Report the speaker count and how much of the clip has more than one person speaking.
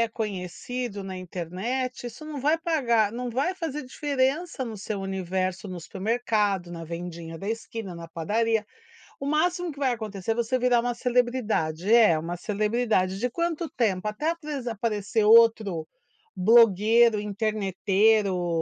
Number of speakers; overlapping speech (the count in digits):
1, no overlap